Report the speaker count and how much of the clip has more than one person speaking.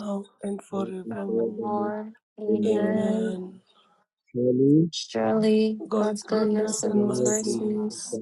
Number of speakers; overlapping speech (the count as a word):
three, about 51%